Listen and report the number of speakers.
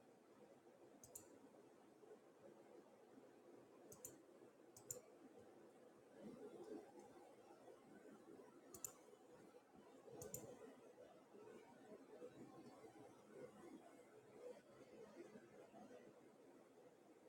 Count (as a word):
zero